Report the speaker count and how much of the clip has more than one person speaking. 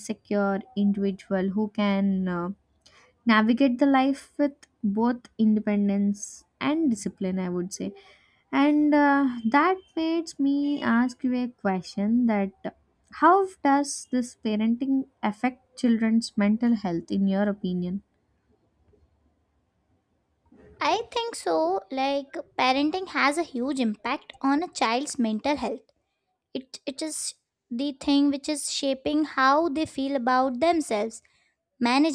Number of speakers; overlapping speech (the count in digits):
2, no overlap